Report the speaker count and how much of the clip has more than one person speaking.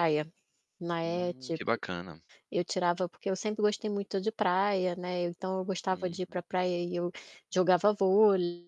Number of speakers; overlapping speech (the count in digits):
2, about 9%